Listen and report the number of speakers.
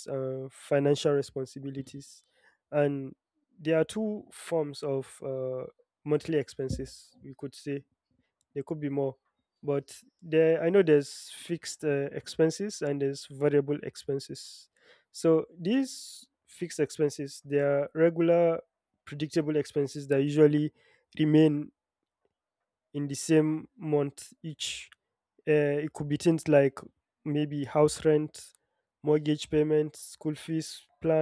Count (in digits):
1